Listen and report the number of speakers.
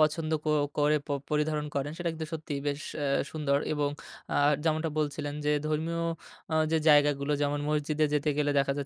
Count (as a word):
one